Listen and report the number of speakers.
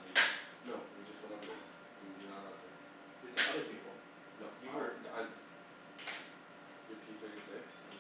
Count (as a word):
two